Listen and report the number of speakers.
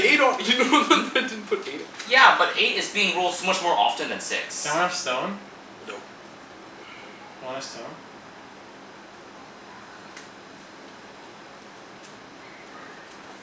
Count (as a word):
three